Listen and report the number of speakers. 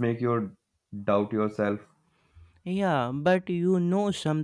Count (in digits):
2